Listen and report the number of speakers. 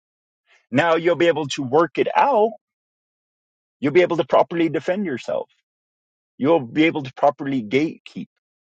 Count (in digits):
1